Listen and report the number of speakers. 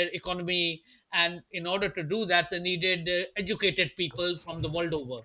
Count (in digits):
1